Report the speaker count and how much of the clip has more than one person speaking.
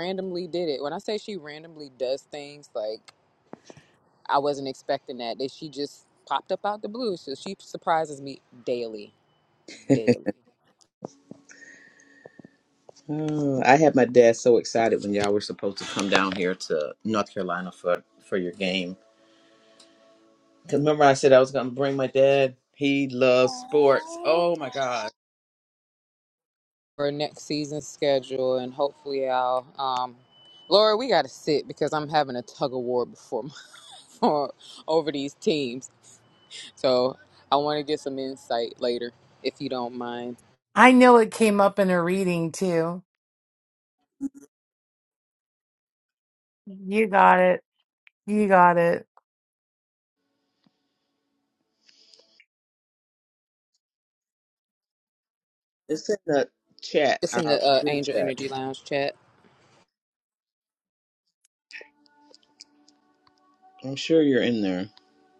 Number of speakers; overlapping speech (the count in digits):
3, about 3%